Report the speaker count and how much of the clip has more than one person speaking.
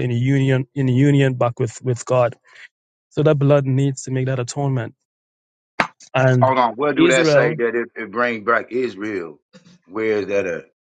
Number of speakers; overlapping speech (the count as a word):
two, about 7%